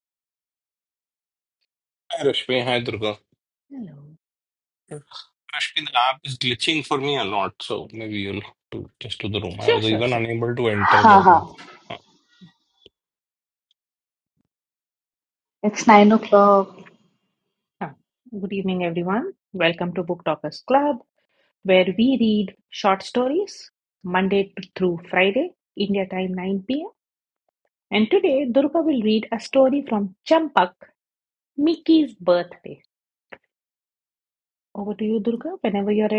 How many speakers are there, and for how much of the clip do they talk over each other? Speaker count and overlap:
3, about 4%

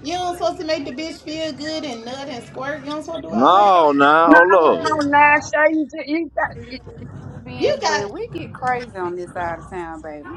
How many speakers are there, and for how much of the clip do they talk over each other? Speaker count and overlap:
4, about 12%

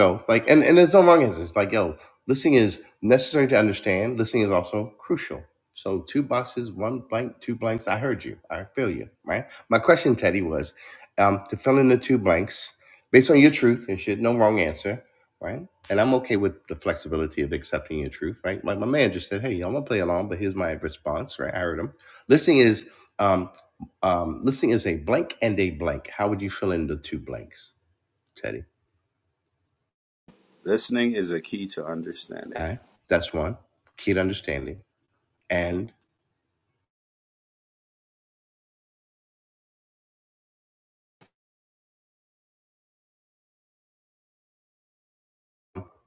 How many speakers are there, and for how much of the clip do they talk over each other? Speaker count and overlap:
2, under 1%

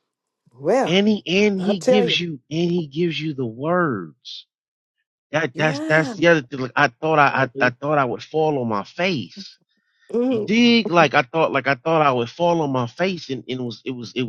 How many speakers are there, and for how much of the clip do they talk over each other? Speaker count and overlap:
2, about 11%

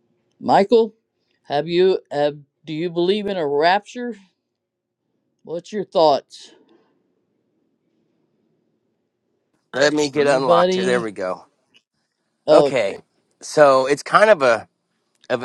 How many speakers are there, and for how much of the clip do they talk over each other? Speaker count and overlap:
2, about 9%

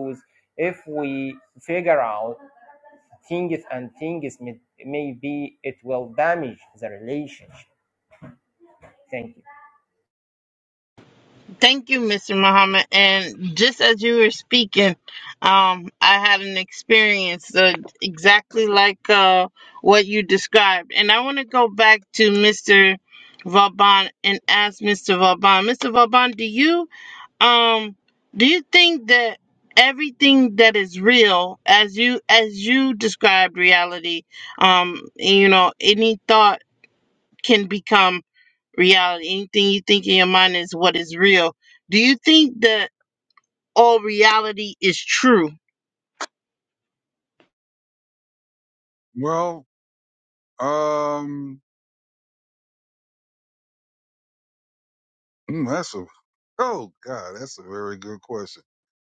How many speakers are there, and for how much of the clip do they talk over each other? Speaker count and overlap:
3, no overlap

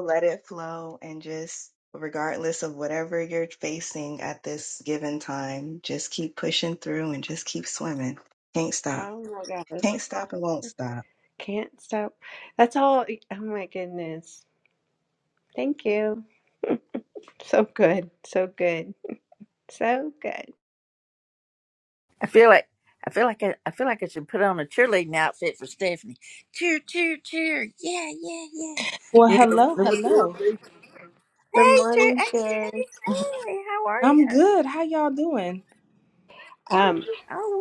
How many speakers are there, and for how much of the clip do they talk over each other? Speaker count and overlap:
4, about 7%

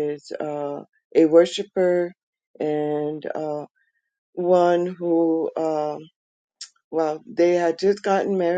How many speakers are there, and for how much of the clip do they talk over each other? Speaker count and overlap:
1, no overlap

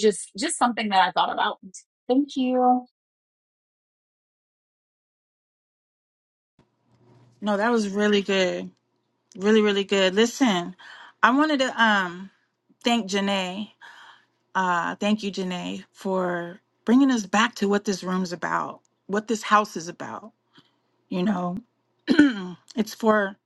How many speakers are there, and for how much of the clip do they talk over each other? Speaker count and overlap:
2, no overlap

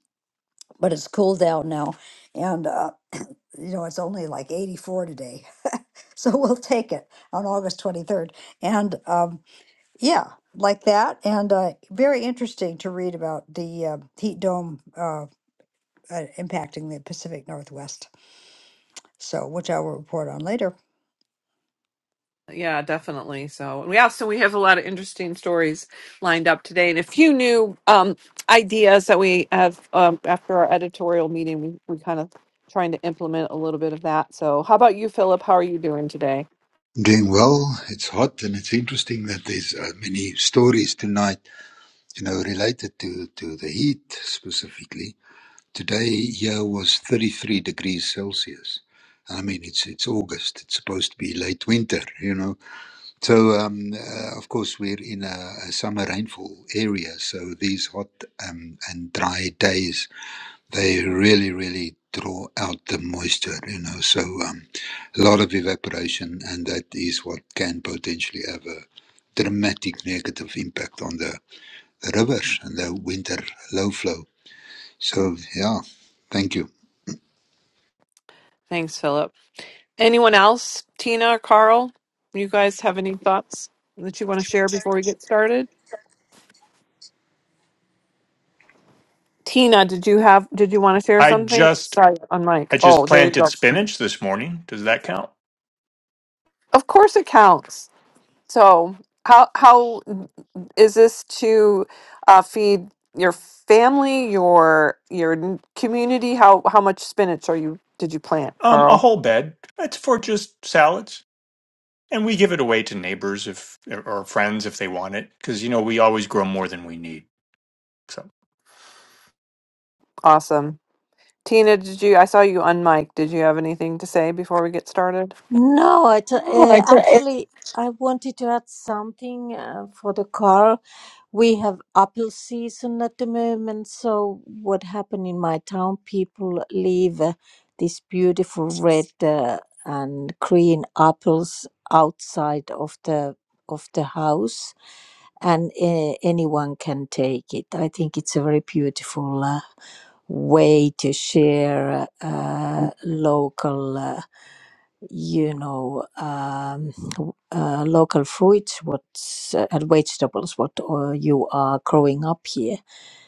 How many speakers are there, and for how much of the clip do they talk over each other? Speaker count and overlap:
5, about 1%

